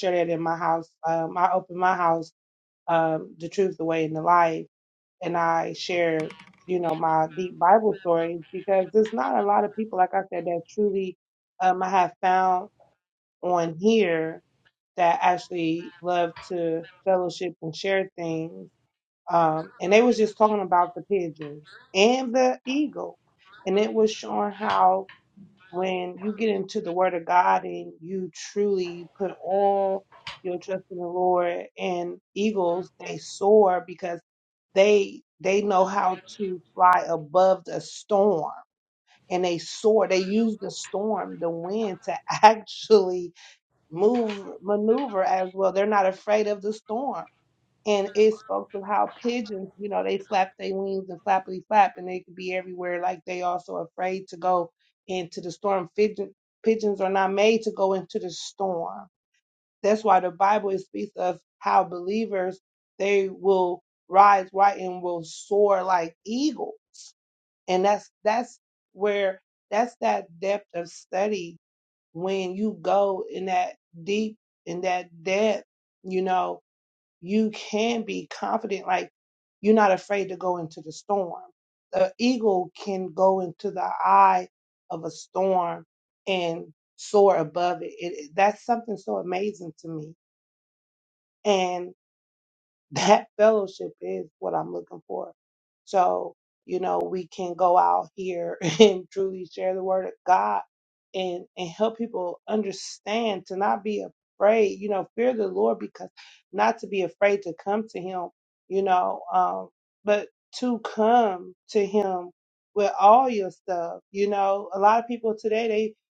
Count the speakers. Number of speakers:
one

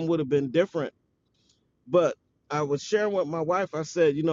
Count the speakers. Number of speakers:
one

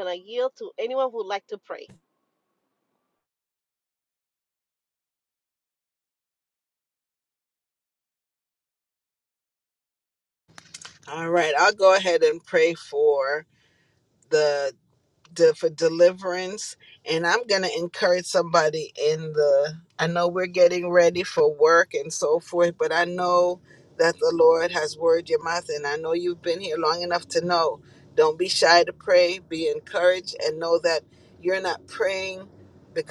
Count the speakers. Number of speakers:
two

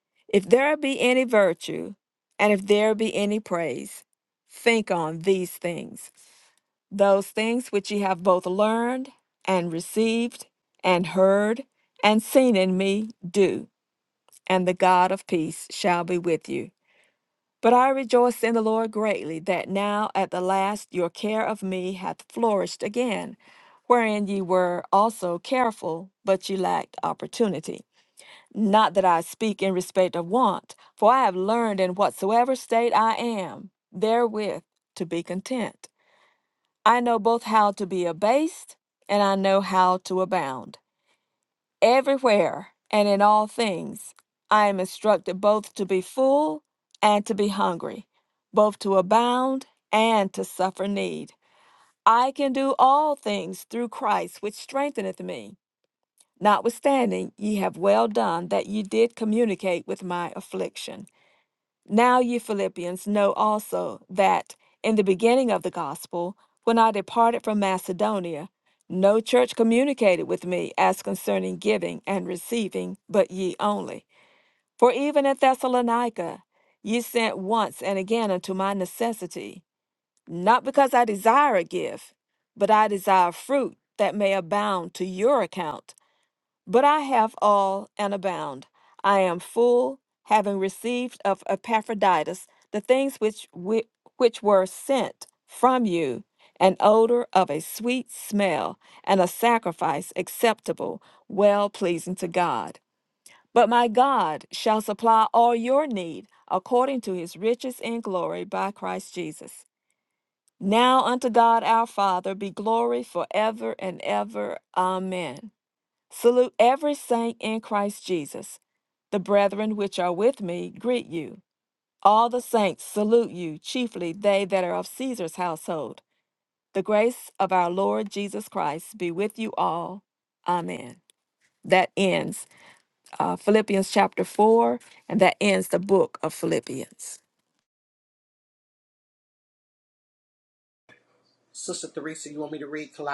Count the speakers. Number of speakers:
two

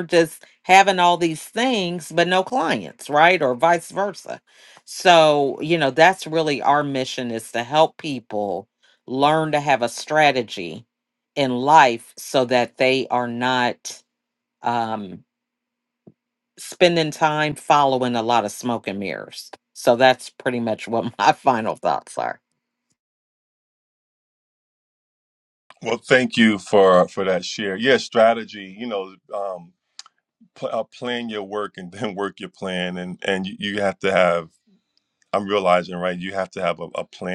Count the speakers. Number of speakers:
two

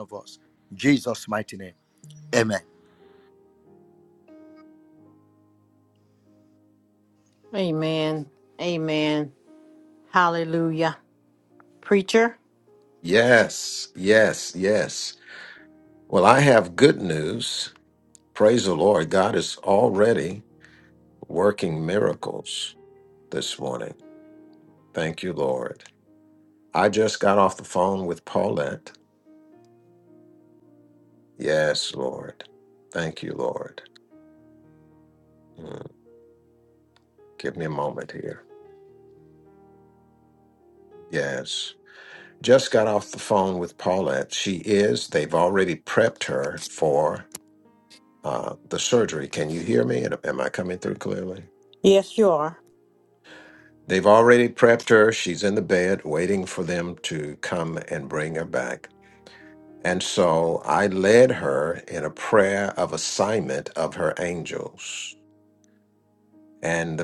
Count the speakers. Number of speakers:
three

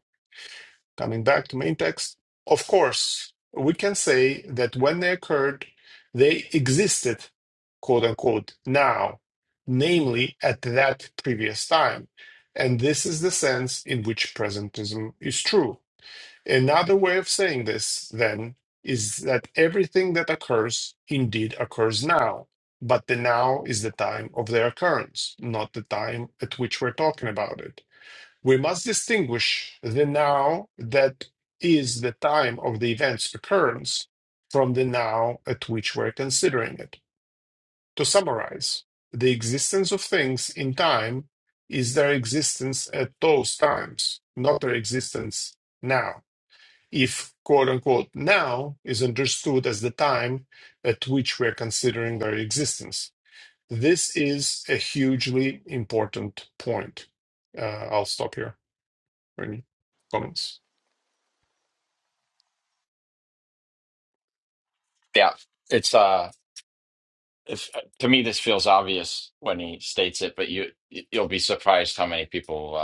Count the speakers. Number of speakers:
two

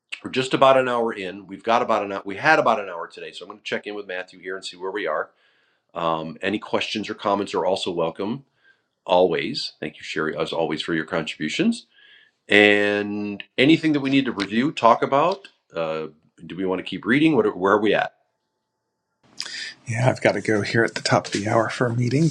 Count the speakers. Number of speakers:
two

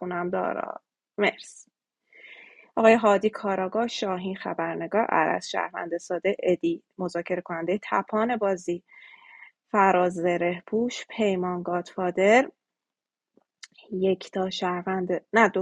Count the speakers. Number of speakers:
one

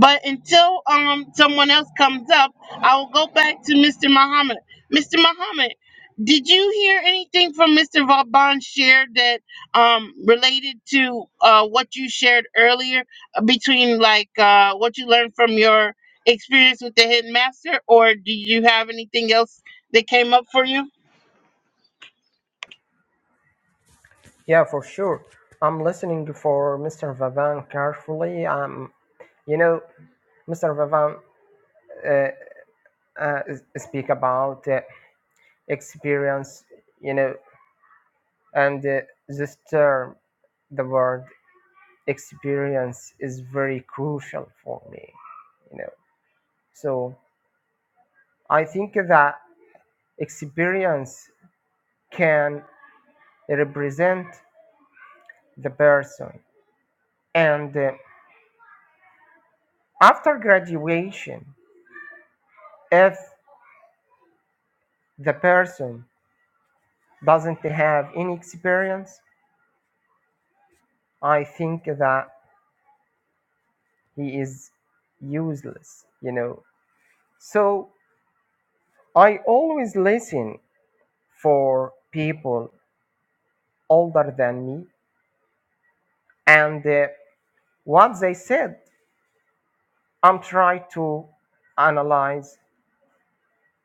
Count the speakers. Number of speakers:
two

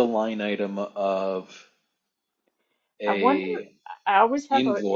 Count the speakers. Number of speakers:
two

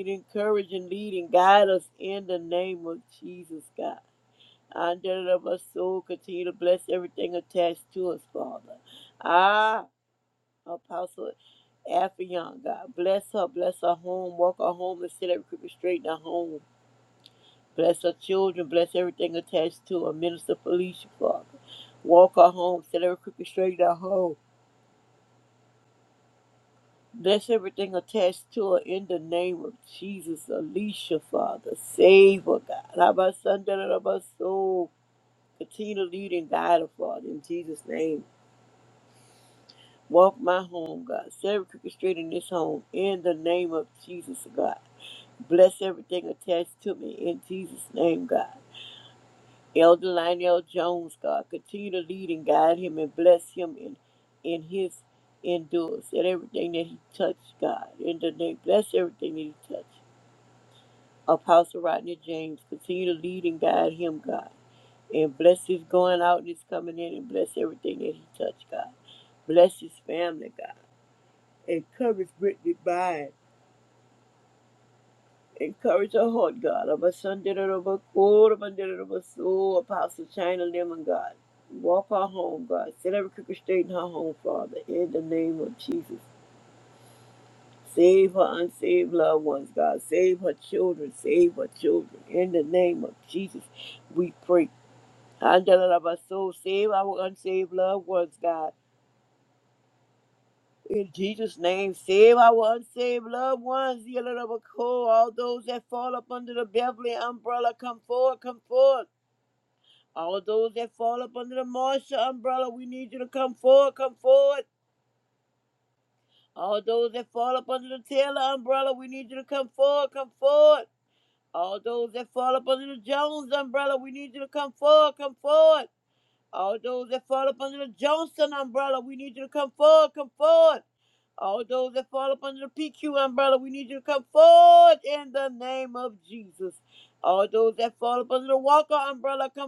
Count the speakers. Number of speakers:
one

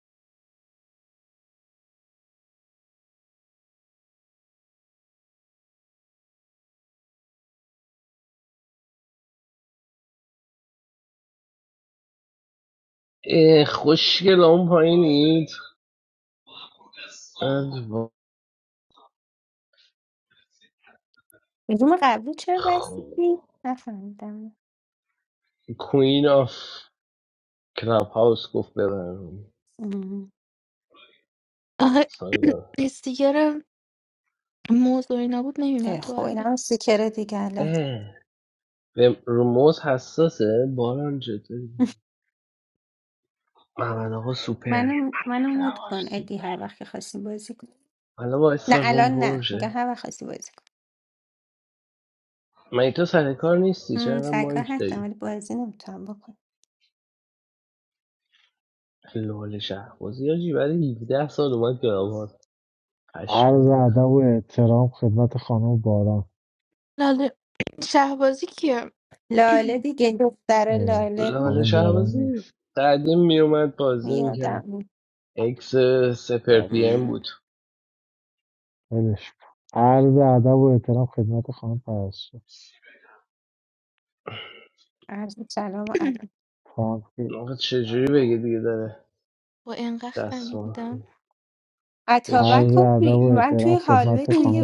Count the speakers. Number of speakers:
four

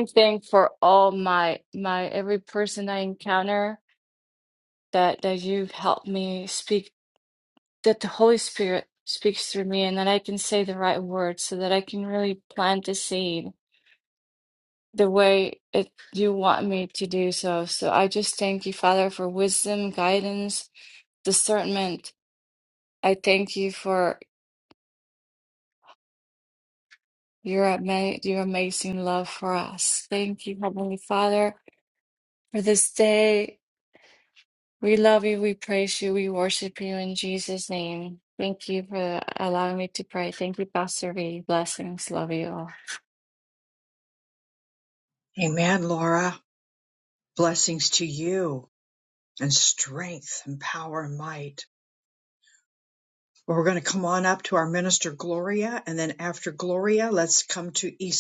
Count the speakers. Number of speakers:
two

